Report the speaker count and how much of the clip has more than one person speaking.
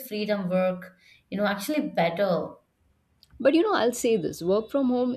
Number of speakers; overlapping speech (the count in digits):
2, no overlap